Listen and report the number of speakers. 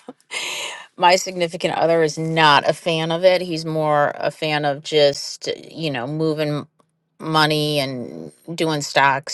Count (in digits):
1